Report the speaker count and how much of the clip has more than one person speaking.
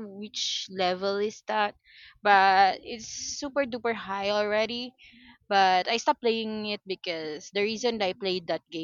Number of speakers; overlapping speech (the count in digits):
1, no overlap